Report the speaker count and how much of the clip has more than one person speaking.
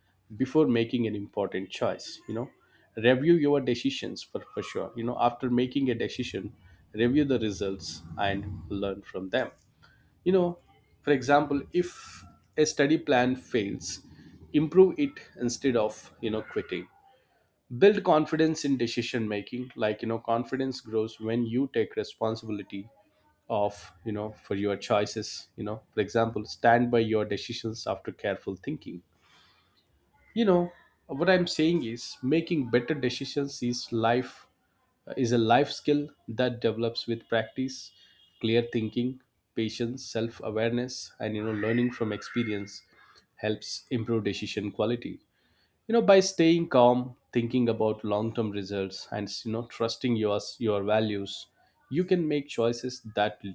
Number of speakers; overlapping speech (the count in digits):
1, no overlap